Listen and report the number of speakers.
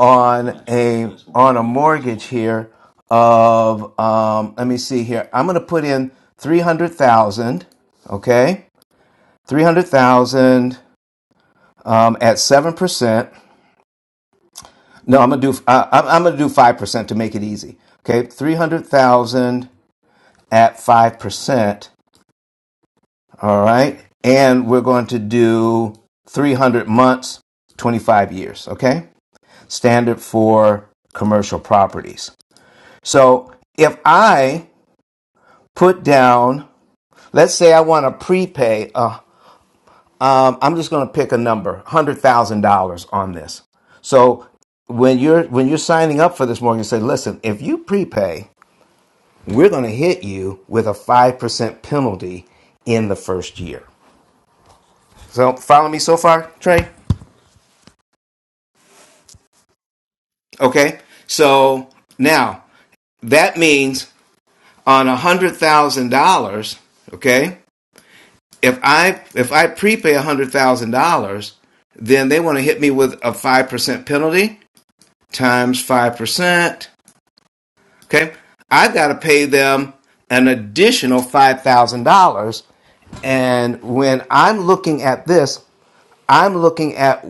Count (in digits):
1